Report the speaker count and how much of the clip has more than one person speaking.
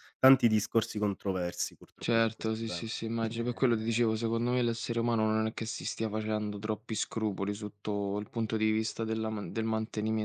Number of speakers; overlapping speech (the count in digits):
2, about 14%